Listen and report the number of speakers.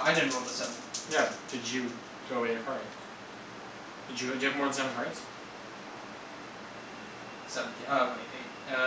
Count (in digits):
2